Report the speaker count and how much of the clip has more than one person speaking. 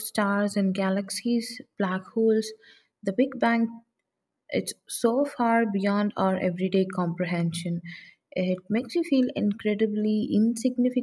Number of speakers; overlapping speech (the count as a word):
one, no overlap